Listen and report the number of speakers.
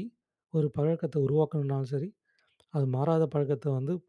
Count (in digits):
1